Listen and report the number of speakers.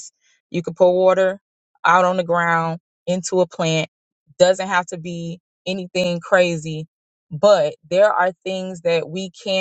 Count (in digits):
1